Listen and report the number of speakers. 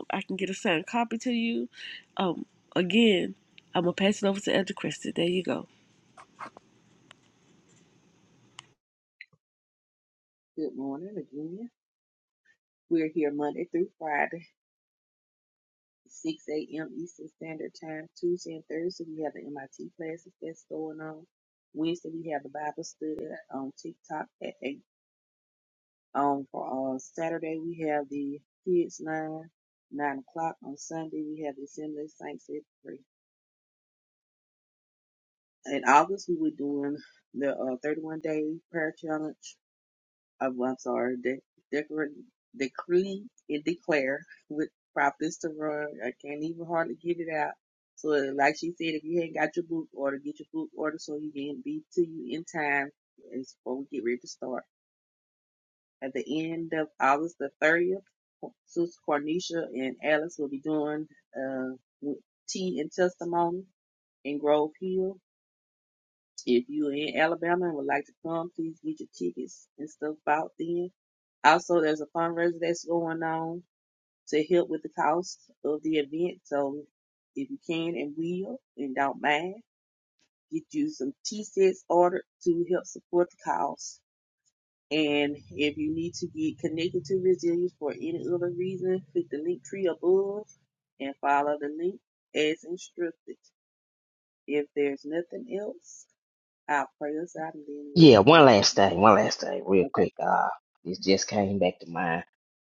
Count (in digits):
3